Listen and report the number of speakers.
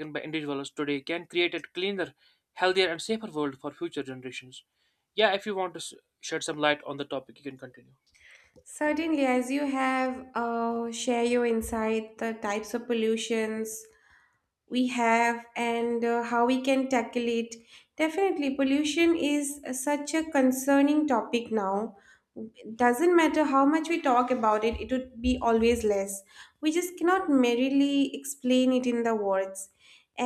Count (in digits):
2